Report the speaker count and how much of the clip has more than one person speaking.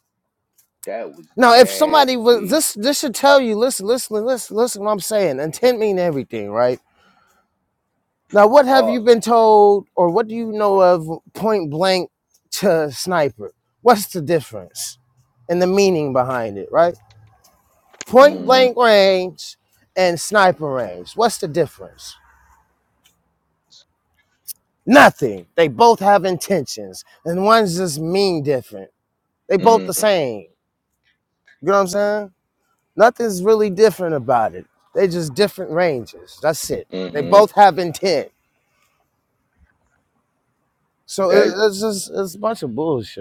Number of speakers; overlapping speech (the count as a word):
two, about 8%